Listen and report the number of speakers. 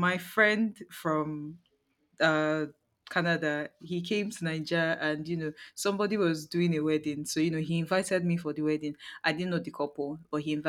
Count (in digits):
1